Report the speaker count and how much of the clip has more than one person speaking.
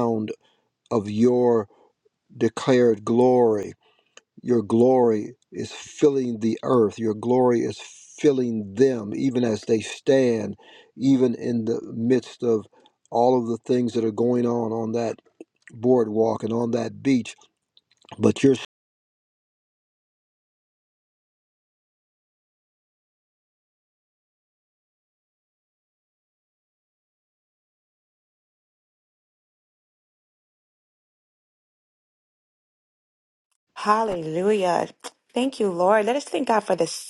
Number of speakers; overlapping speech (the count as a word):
two, no overlap